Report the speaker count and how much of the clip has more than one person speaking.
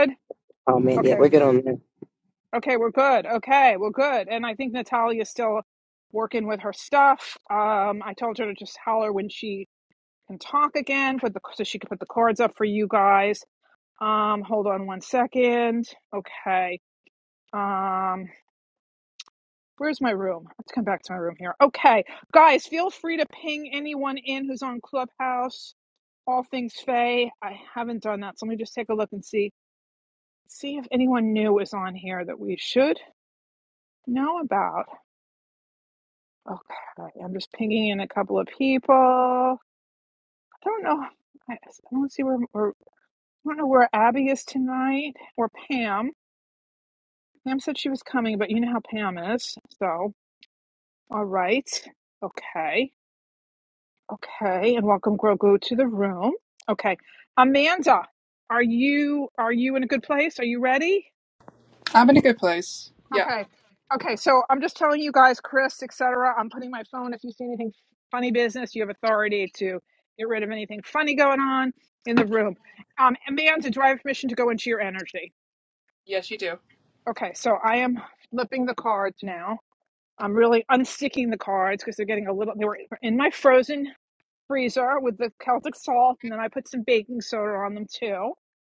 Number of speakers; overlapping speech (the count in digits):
3, about 1%